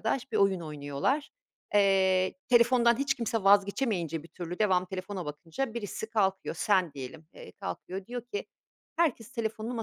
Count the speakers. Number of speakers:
1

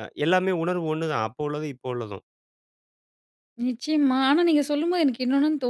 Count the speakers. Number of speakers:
2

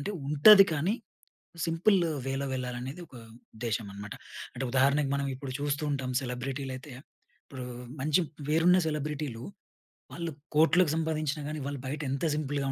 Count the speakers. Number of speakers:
1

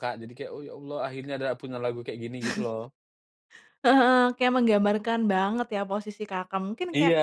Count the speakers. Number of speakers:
2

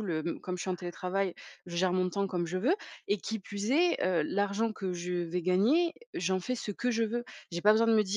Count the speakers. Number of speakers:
1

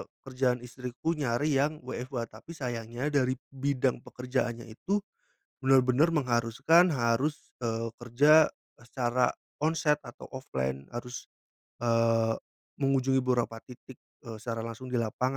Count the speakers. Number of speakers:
1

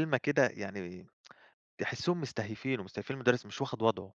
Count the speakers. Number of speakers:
1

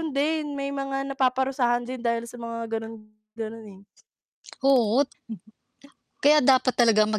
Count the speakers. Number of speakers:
2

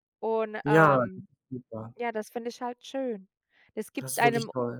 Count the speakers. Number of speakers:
2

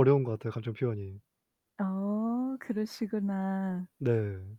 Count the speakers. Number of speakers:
2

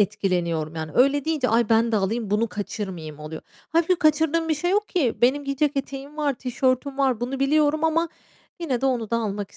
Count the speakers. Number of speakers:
1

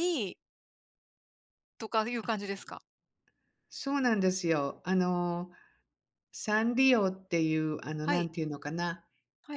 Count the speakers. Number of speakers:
2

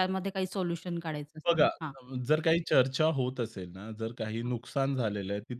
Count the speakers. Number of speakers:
2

